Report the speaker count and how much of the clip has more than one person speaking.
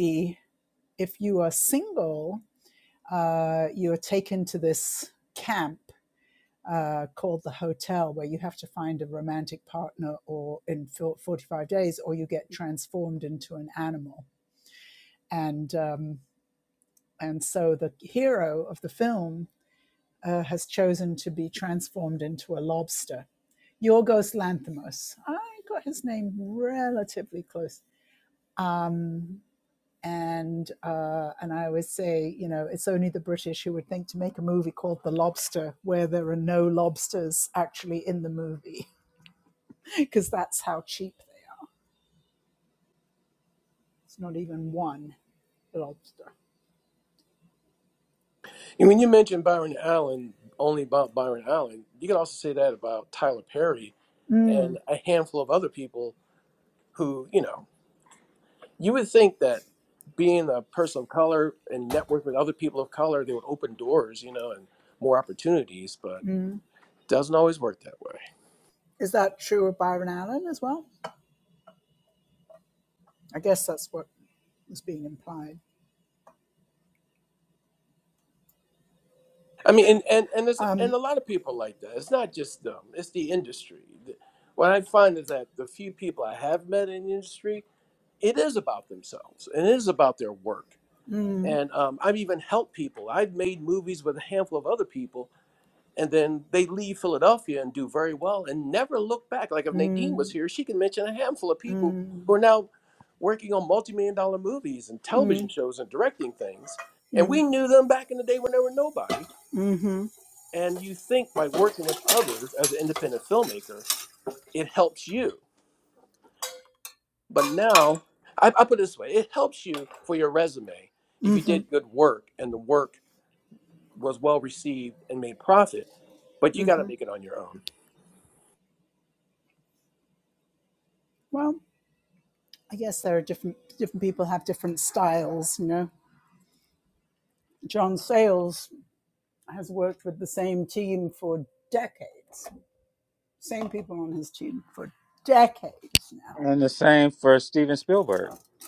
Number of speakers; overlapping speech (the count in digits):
3, about 2%